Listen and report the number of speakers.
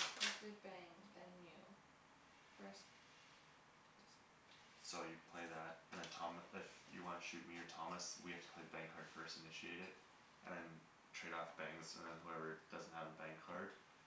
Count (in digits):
2